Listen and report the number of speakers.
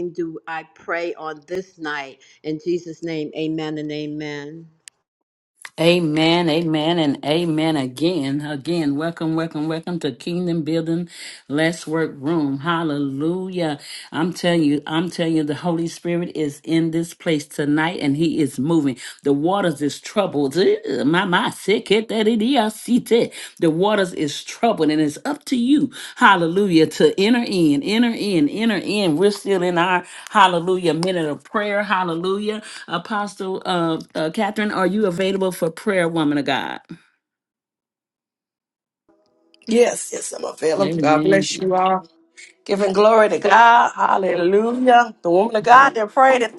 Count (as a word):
three